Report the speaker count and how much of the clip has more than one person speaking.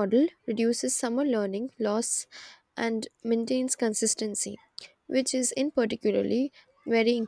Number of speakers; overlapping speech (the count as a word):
one, no overlap